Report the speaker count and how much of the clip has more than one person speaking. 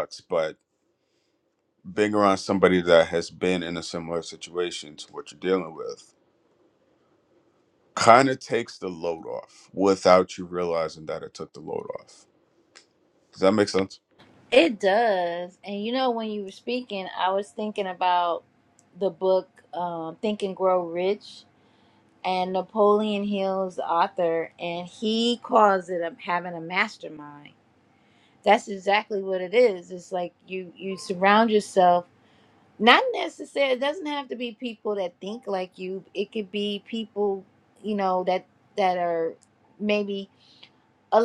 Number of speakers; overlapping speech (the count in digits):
2, no overlap